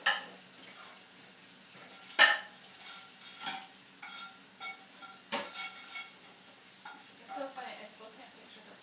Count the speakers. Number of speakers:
1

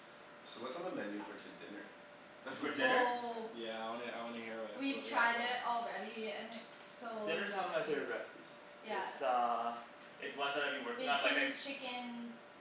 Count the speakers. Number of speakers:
4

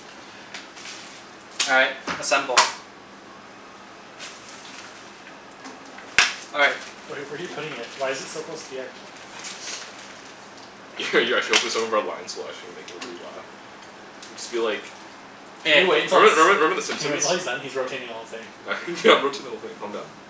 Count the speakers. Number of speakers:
3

